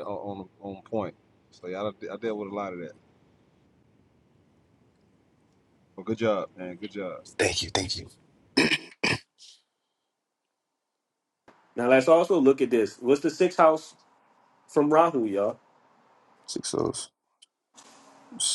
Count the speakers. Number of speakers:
3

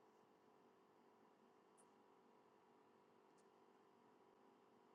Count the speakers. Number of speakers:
0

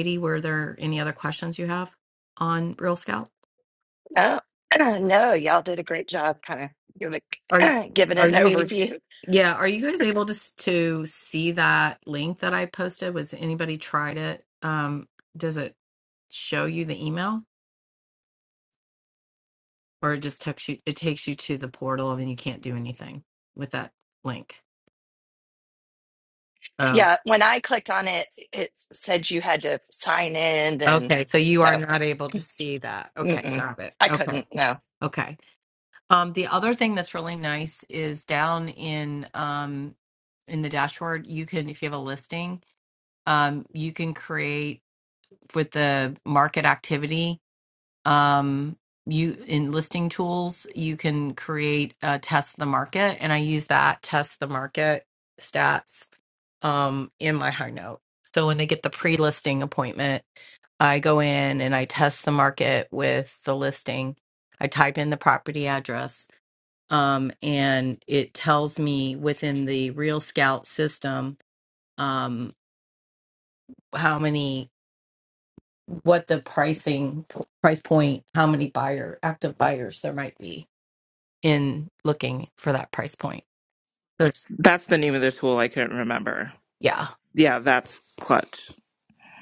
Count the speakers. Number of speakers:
3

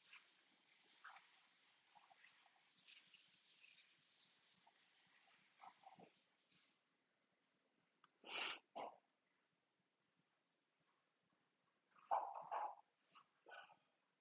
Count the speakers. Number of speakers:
0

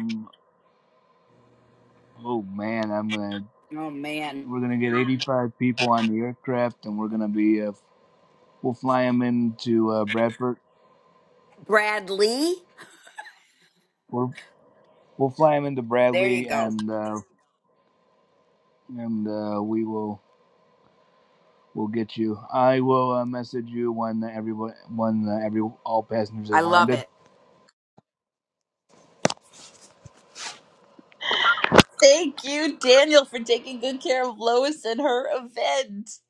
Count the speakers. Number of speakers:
3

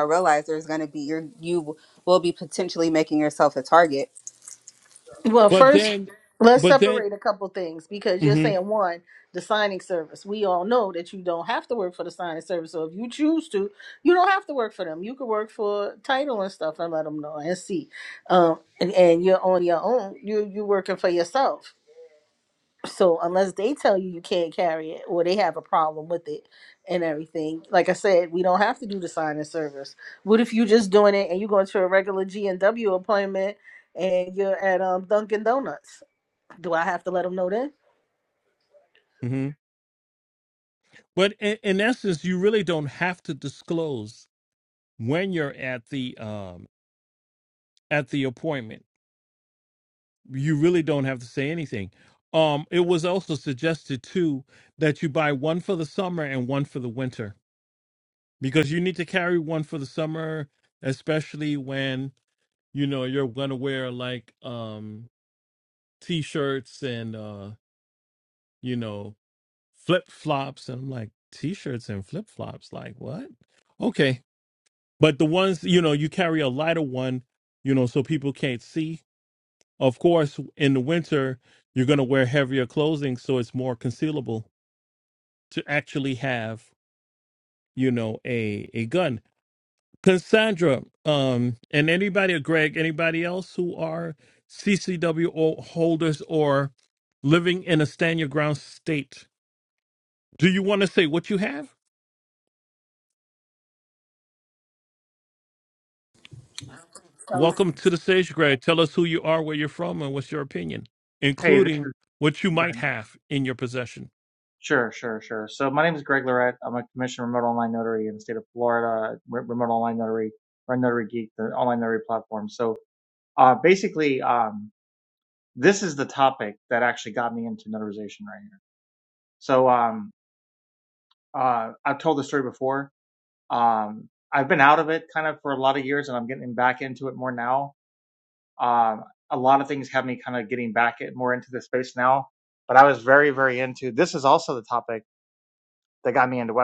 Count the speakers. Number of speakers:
4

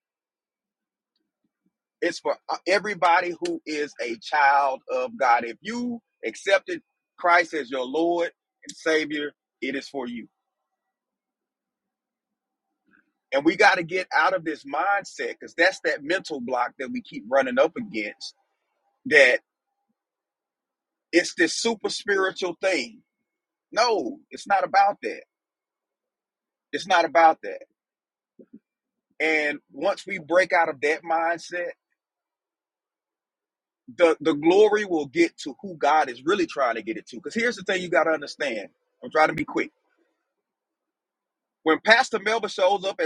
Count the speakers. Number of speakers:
1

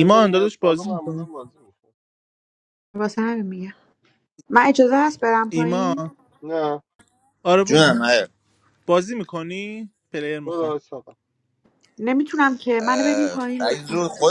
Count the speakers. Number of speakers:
4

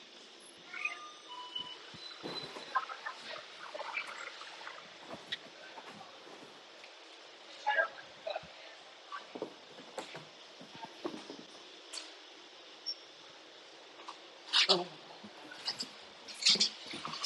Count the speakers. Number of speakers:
0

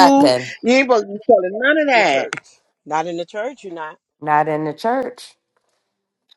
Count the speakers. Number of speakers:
3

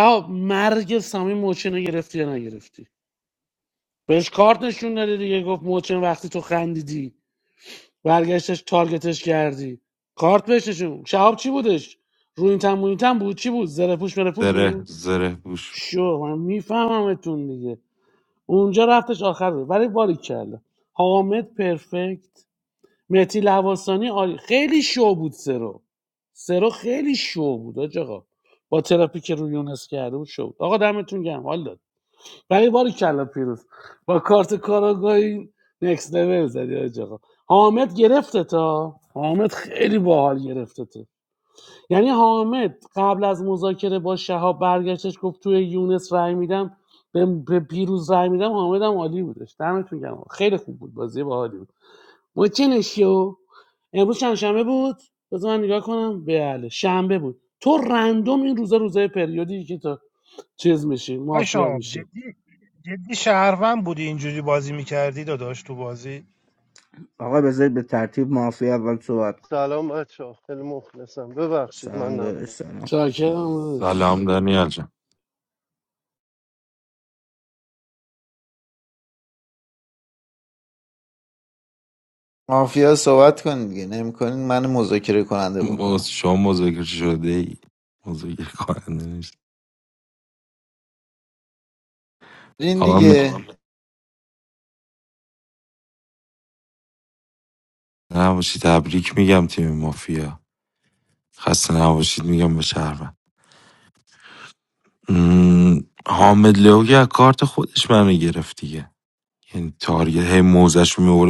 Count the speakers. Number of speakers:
6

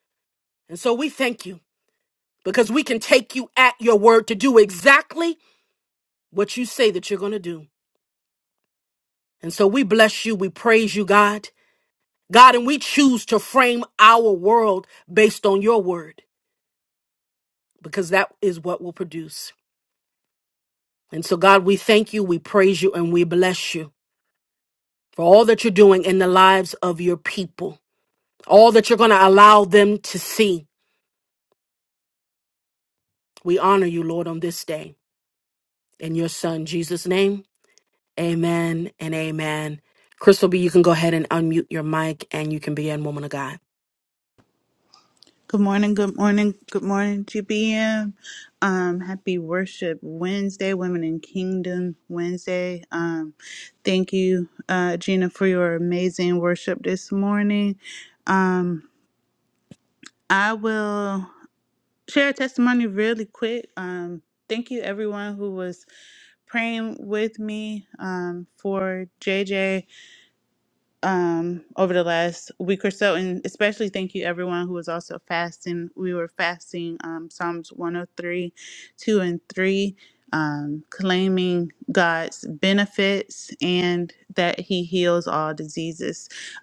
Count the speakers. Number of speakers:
2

